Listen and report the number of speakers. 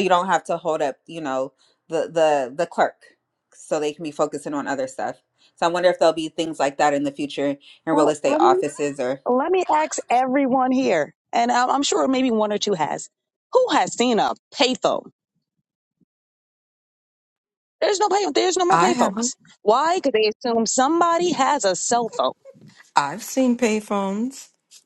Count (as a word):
three